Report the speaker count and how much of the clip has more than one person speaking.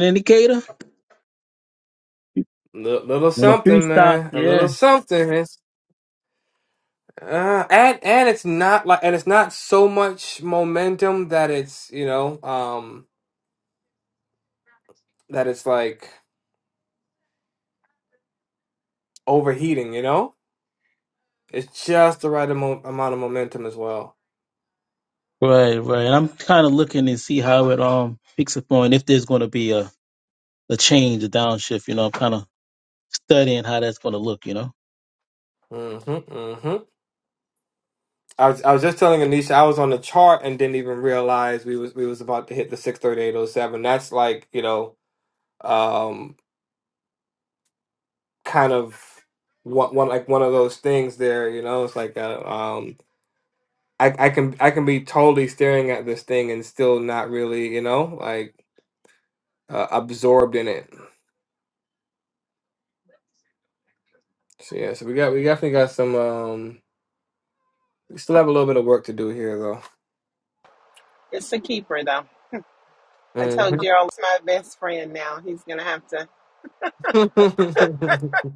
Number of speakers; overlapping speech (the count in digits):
3, about 2%